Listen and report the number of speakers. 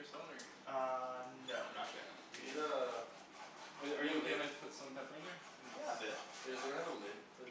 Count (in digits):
3